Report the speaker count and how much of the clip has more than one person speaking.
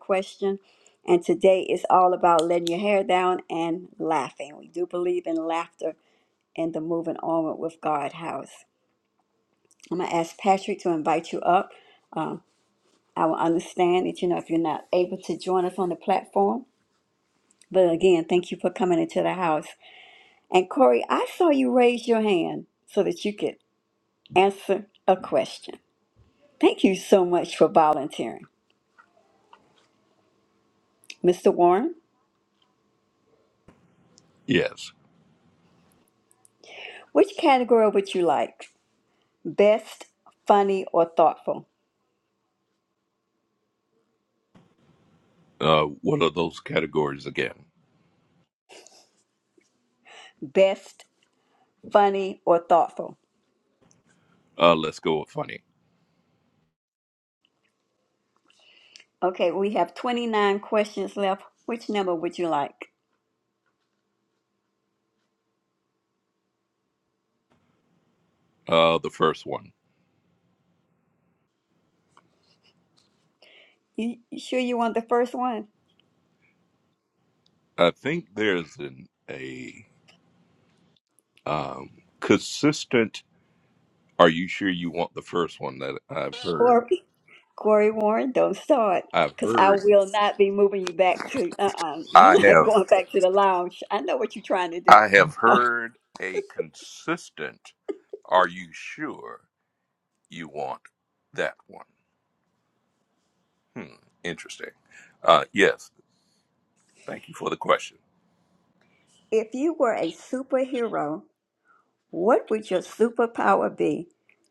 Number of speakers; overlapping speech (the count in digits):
2, about 2%